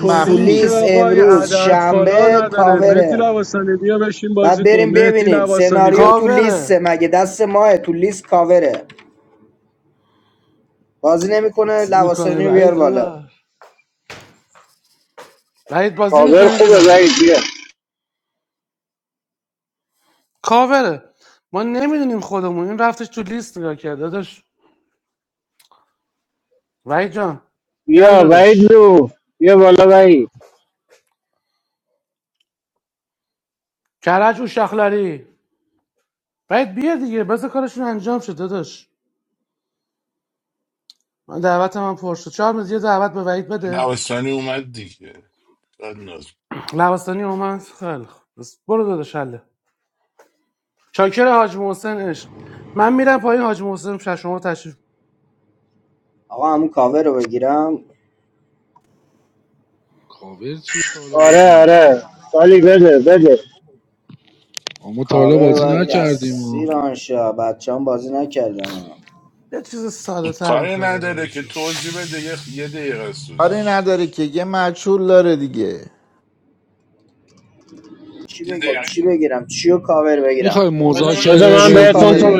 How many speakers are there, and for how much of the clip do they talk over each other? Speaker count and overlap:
7, about 16%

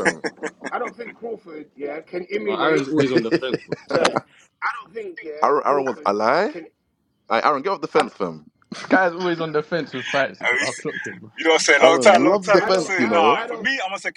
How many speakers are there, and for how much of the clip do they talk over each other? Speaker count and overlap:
4, about 25%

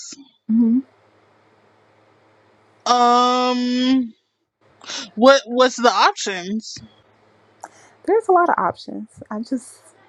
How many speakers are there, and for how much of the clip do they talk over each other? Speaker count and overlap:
2, no overlap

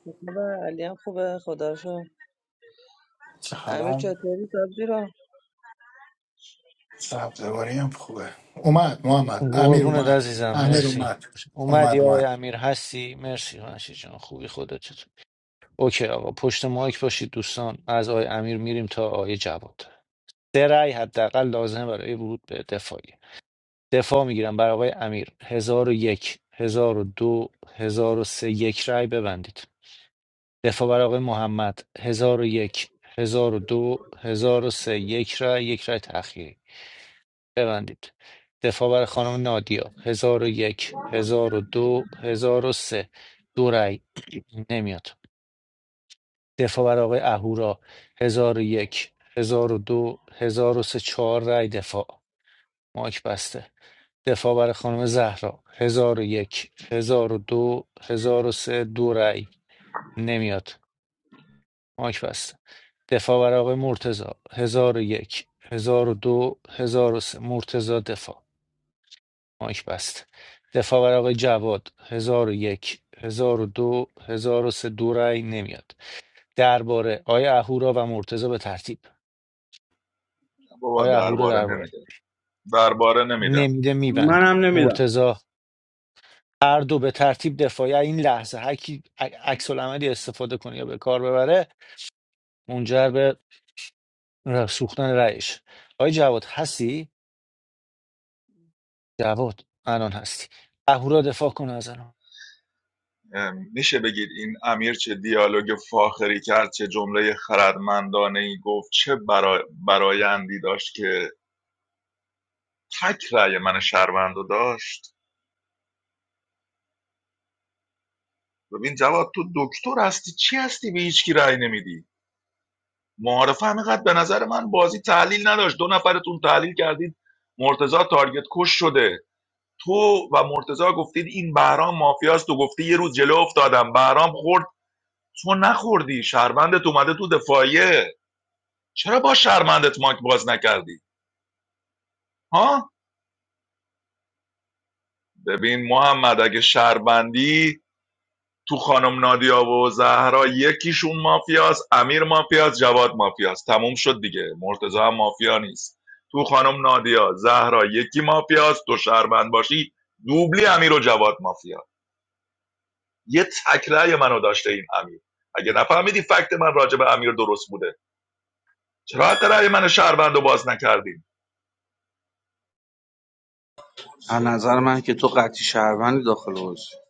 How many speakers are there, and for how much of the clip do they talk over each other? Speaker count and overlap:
5, about 2%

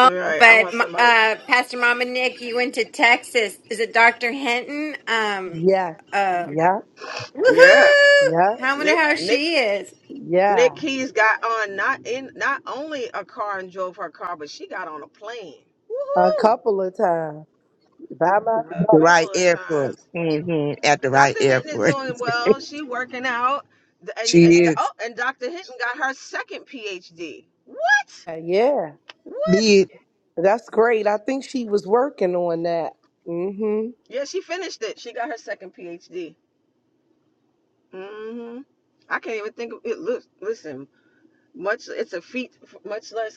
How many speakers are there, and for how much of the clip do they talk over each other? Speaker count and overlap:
4, about 14%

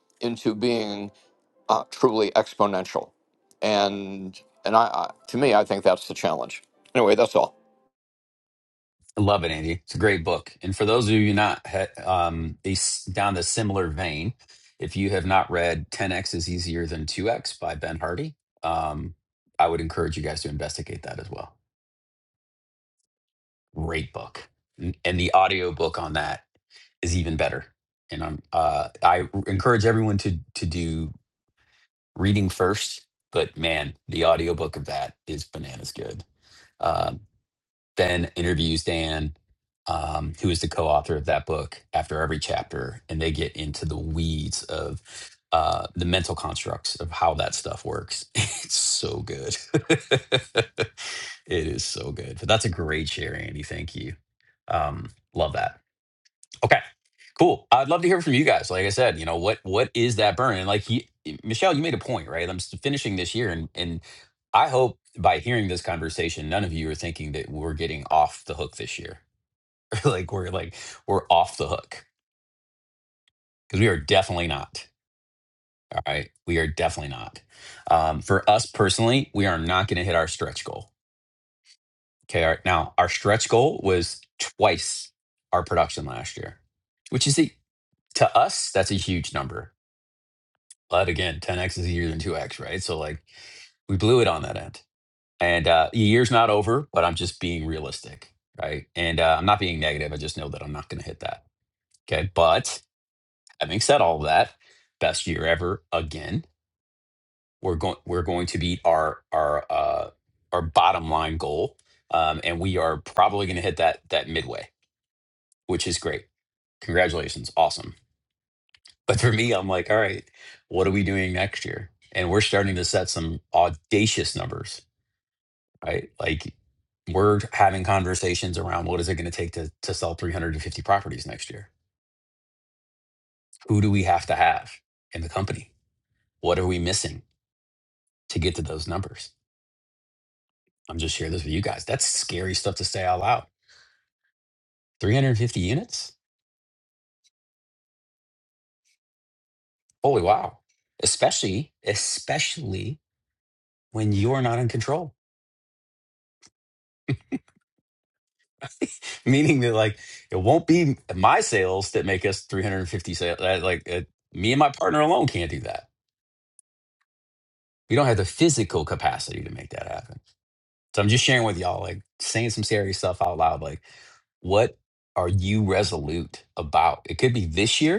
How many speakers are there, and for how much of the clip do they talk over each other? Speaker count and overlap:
2, no overlap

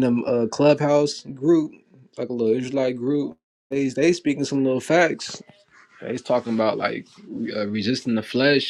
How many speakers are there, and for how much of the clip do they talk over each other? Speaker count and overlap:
1, no overlap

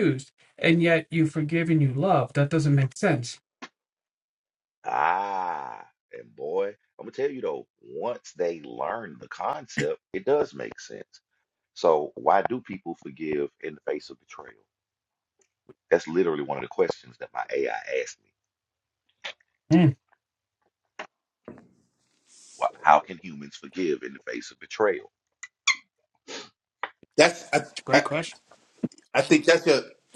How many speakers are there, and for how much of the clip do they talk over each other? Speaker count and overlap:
3, about 1%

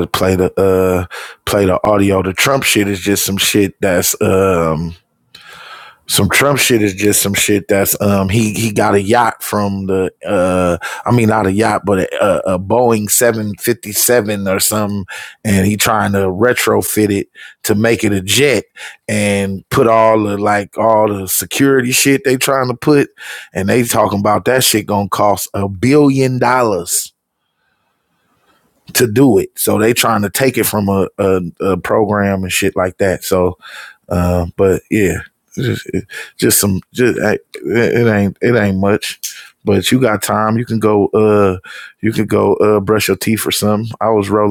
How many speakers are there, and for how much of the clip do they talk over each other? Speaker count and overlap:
1, no overlap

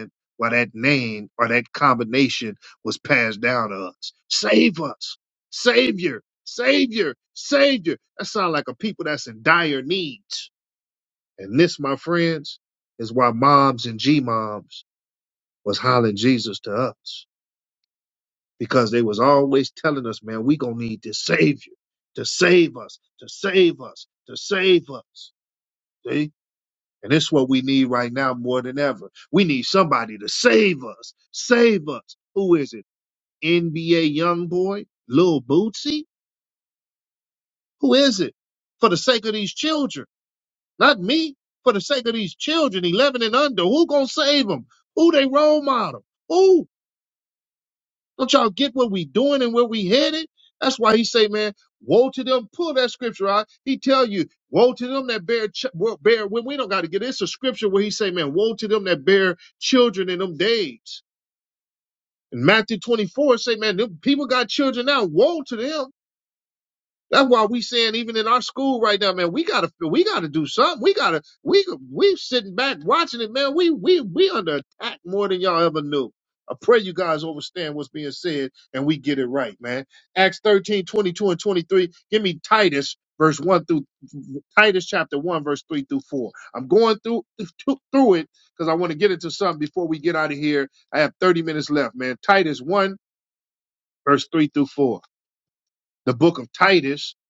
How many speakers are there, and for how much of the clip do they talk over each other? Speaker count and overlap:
1, no overlap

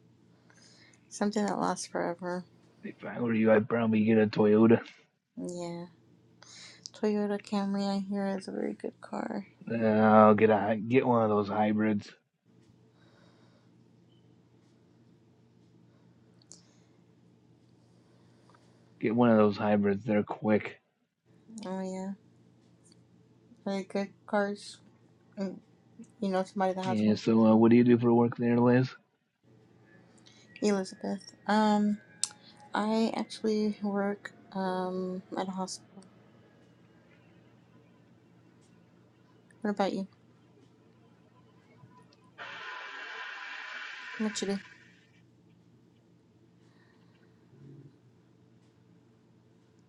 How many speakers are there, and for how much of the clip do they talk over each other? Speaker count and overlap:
2, about 1%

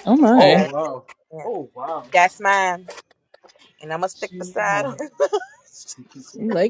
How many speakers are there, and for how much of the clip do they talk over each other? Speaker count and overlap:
3, about 7%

